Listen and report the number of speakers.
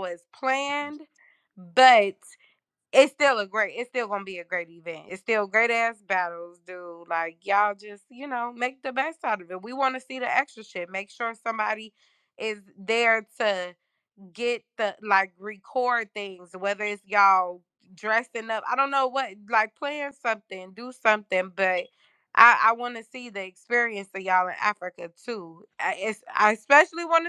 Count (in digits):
1